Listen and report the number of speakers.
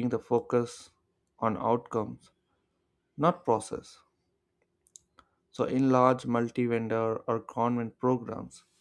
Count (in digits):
1